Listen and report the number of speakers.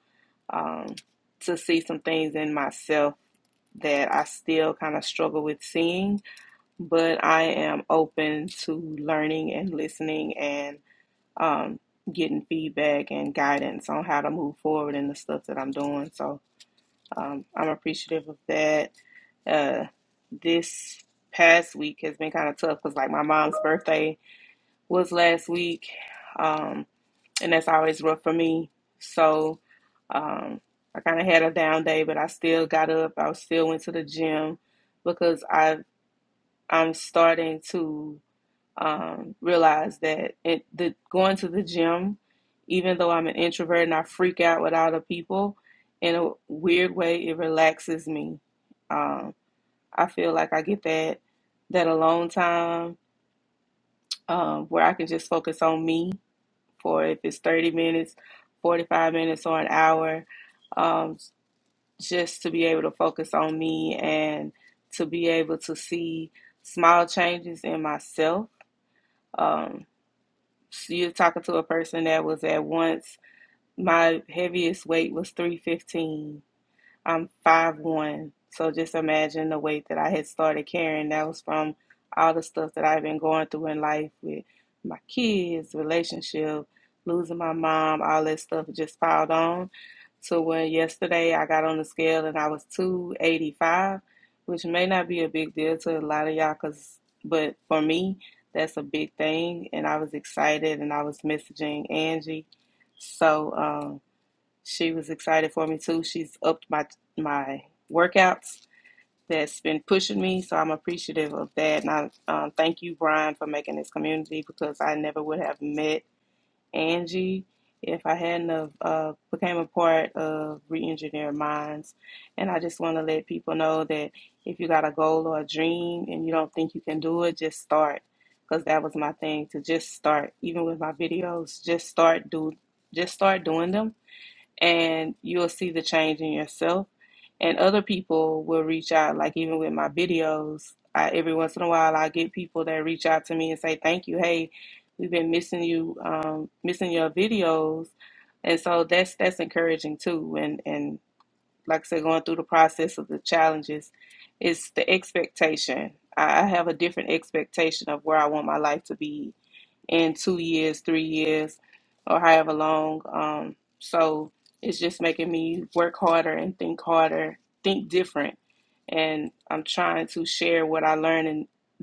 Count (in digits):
1